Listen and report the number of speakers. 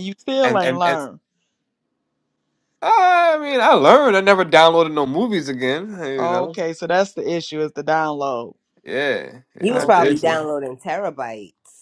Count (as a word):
three